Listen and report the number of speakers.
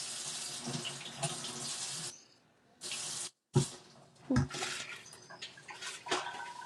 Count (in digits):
0